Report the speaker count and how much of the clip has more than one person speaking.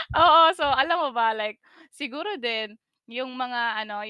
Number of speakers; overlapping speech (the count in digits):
1, no overlap